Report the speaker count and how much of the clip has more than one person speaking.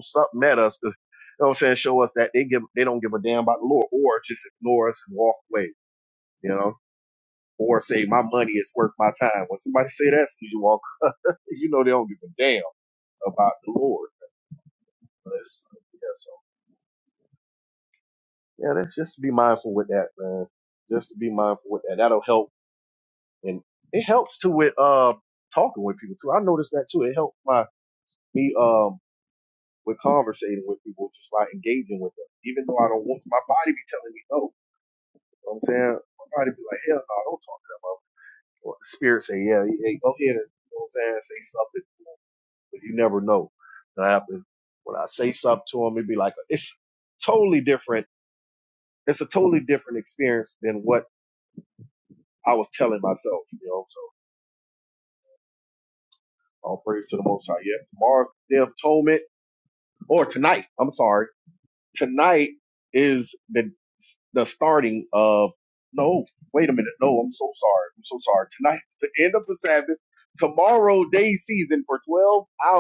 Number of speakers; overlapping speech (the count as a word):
one, no overlap